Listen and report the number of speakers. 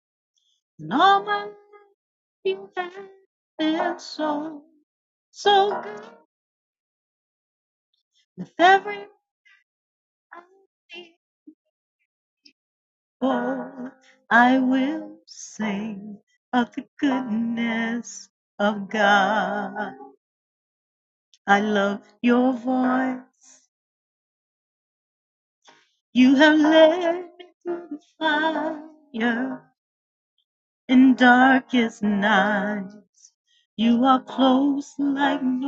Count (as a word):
one